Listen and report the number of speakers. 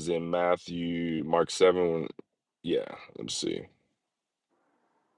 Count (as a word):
one